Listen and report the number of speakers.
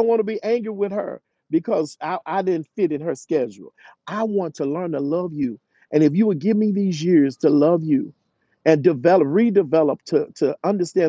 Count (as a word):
one